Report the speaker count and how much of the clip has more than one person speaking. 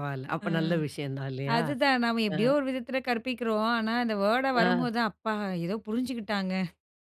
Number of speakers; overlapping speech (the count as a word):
two, about 10%